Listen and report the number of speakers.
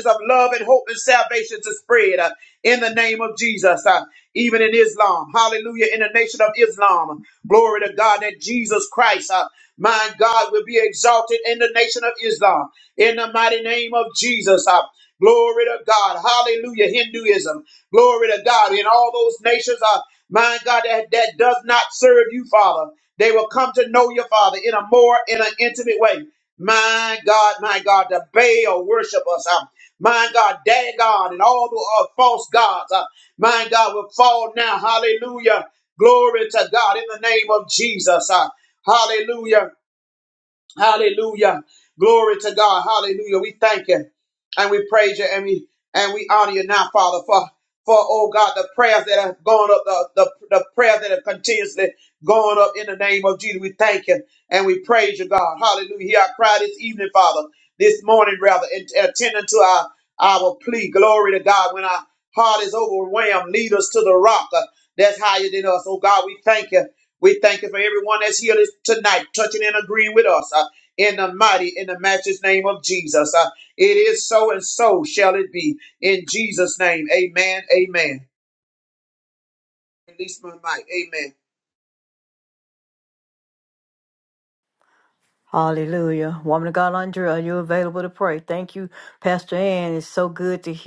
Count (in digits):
2